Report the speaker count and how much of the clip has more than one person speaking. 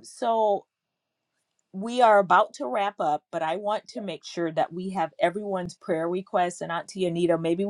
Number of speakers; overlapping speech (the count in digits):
1, no overlap